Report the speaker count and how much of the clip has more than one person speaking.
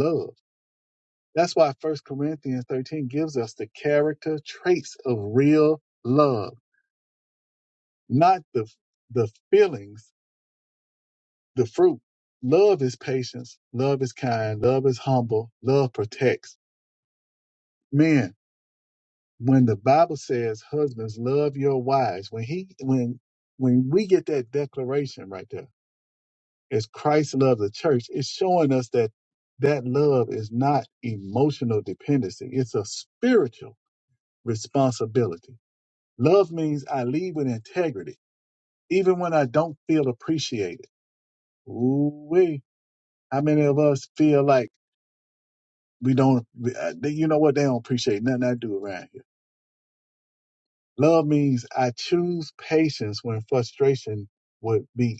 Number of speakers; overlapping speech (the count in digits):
1, no overlap